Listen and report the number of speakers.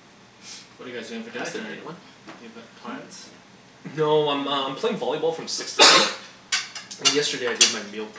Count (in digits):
2